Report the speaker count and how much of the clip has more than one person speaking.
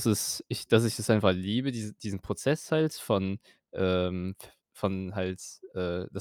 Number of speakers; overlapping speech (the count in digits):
1, no overlap